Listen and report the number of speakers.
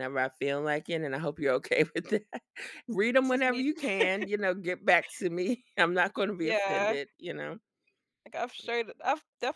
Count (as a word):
two